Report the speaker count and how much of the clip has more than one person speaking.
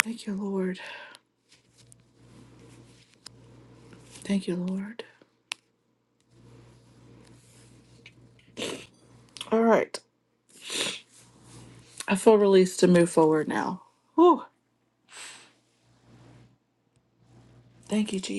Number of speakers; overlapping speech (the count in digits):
1, no overlap